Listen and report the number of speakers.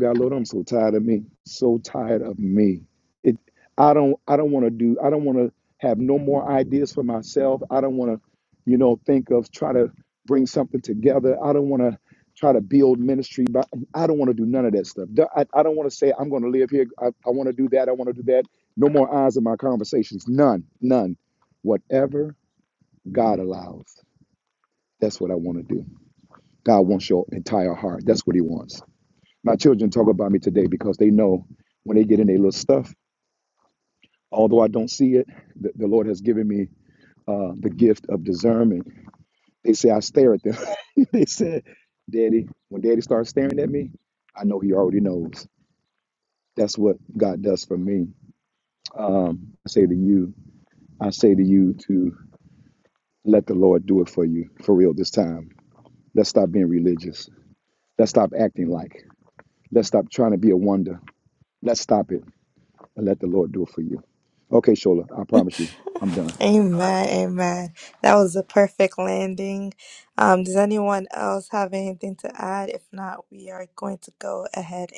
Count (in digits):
2